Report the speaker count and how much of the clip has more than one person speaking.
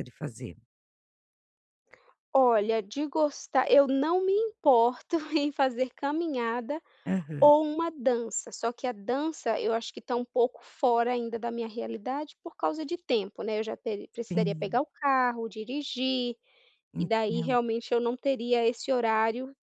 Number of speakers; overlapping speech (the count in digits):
2, about 5%